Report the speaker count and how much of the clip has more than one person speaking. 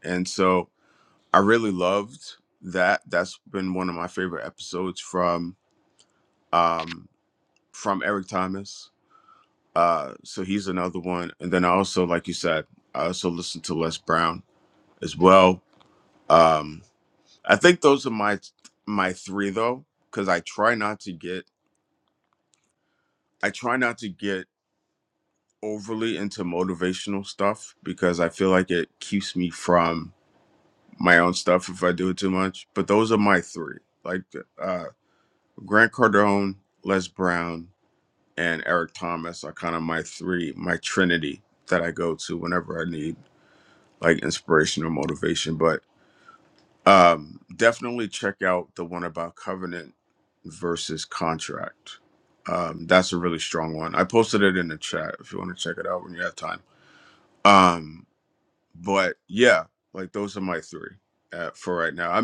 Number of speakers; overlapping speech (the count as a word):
one, no overlap